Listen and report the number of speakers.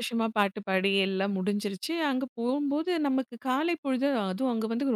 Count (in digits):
1